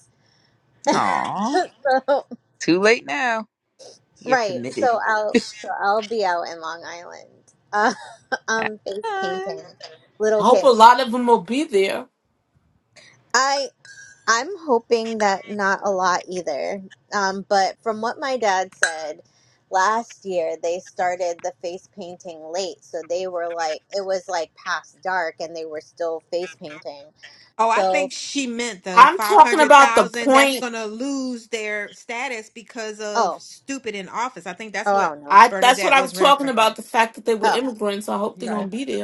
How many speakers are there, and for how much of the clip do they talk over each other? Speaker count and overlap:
4, about 15%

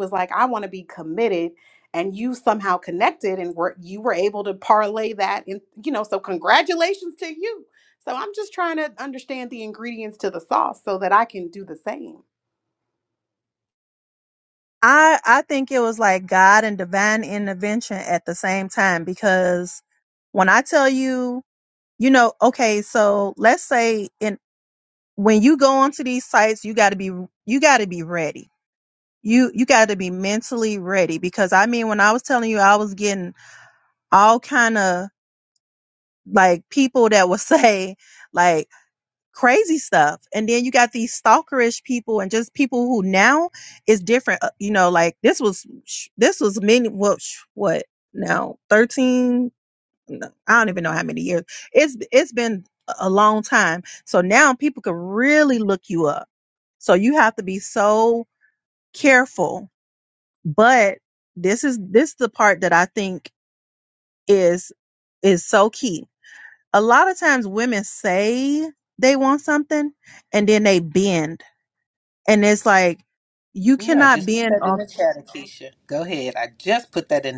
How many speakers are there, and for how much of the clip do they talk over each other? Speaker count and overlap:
3, about 1%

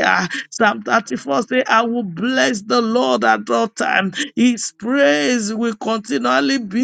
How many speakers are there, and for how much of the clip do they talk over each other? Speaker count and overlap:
1, no overlap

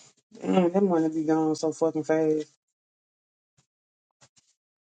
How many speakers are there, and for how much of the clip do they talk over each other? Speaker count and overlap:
1, no overlap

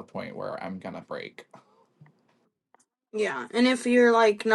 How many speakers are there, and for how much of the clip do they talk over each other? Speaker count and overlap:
2, no overlap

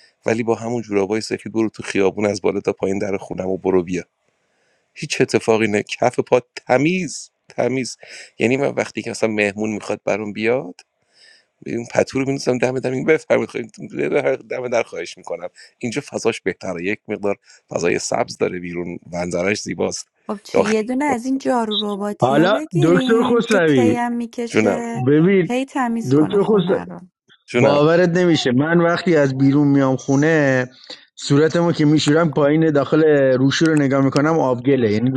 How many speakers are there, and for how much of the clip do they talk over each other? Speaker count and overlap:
3, about 9%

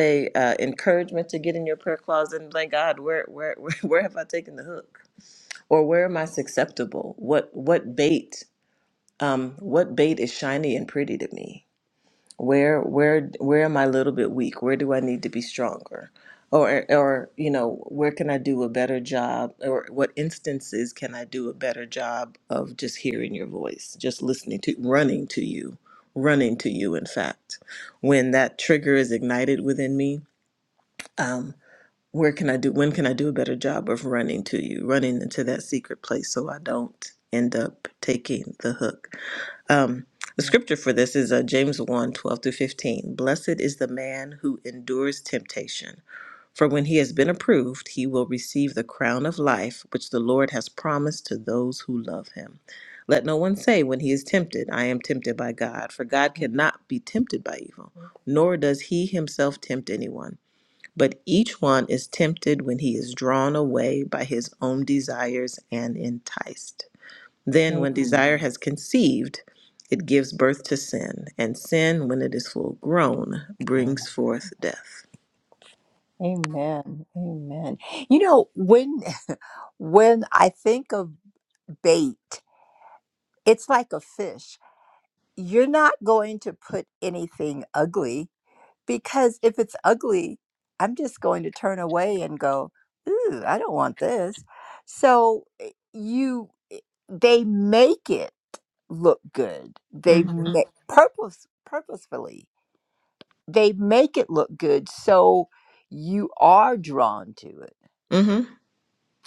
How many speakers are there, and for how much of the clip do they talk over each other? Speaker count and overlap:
2, about 1%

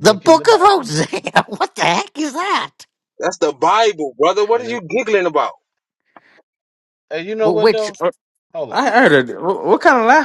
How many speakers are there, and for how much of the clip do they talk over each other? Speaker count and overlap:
4, about 15%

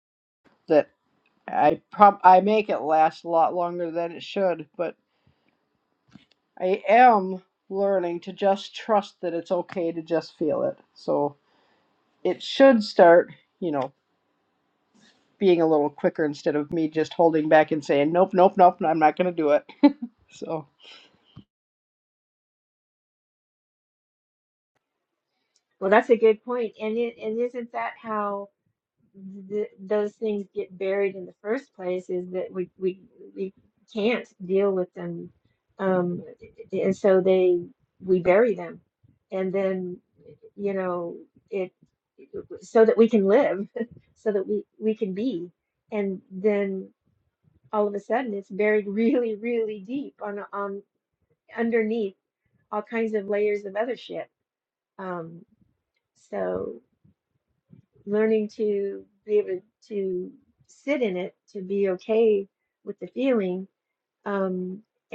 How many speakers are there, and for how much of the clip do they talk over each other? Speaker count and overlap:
2, no overlap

